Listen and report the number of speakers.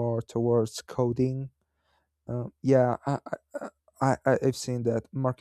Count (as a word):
one